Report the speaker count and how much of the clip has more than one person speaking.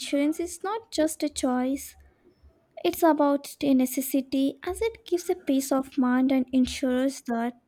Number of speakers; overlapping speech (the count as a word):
one, no overlap